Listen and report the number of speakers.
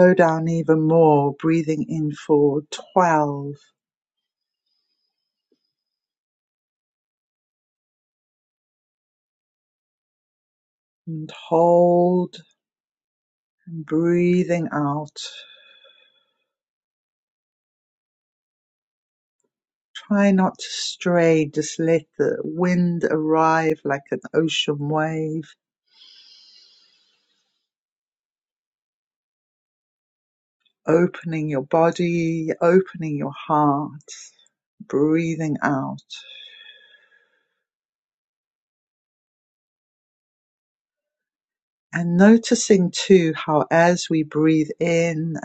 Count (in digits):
1